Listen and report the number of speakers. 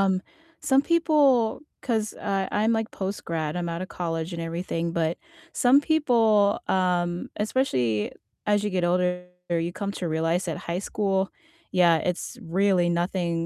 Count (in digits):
1